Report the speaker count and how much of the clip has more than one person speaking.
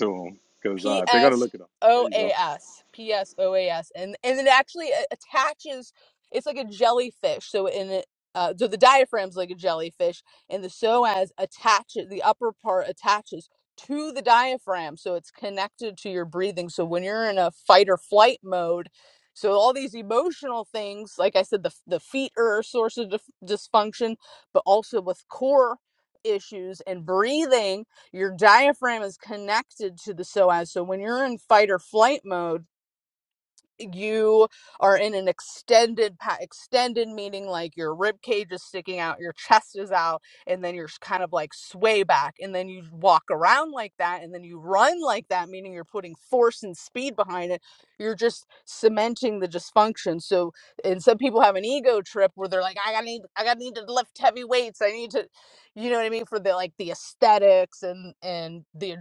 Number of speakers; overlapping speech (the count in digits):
2, about 1%